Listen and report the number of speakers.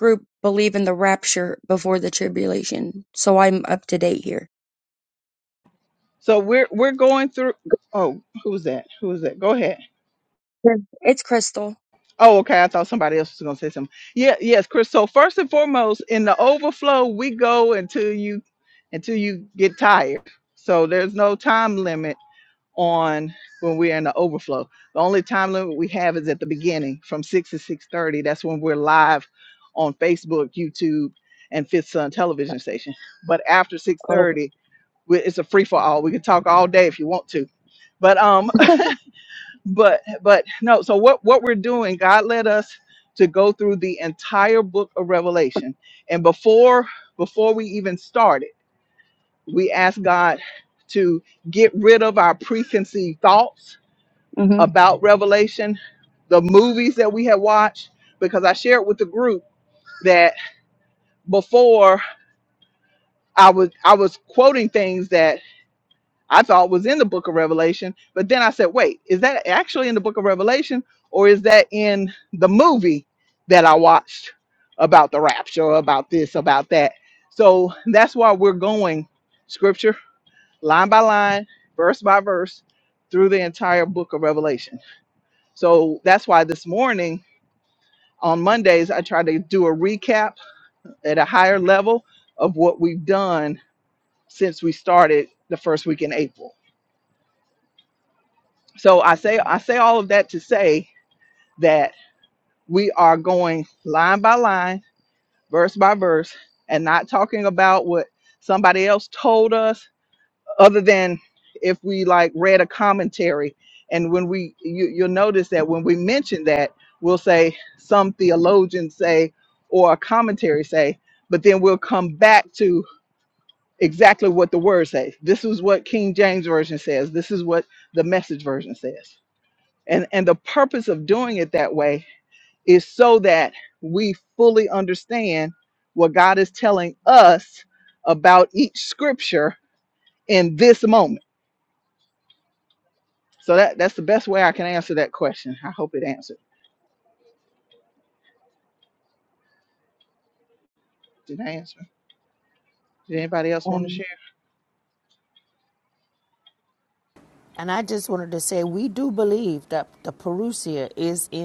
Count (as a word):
three